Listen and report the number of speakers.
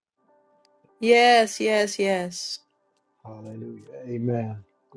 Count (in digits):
2